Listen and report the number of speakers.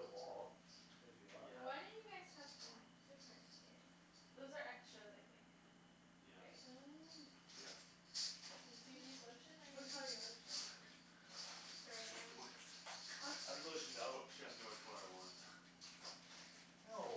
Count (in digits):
4